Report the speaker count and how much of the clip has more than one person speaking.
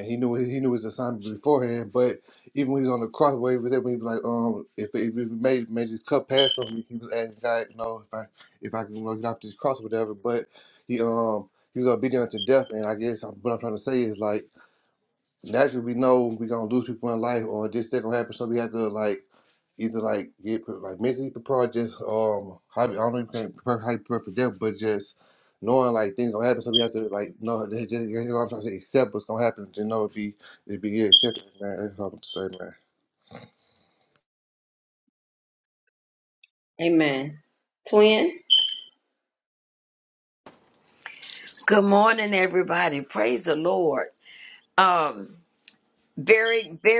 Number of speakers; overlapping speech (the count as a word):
three, no overlap